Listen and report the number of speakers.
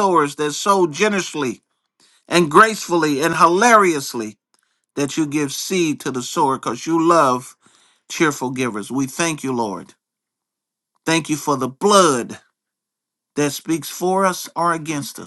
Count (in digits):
1